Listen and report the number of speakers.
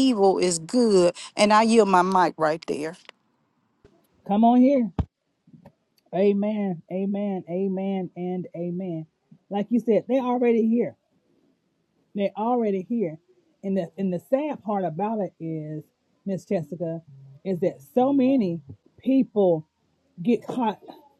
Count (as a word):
two